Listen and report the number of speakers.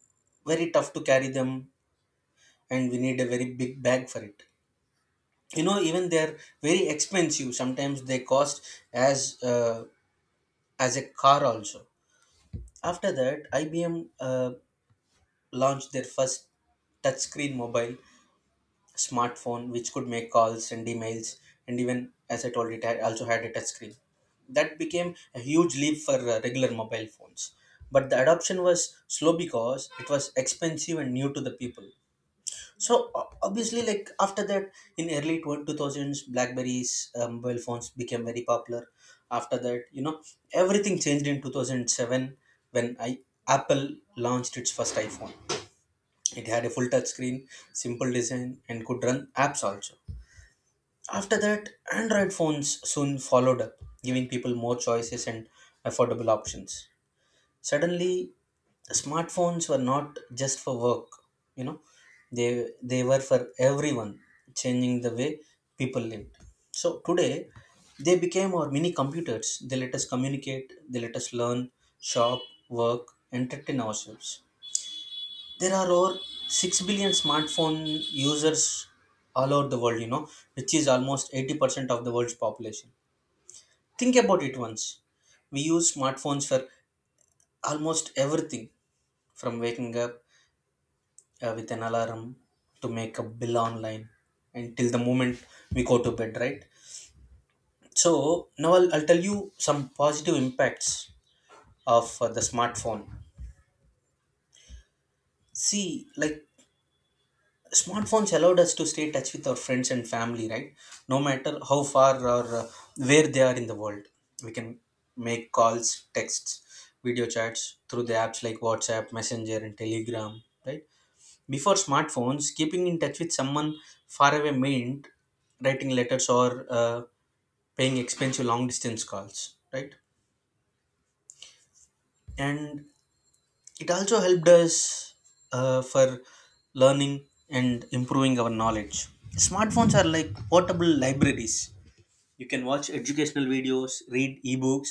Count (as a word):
one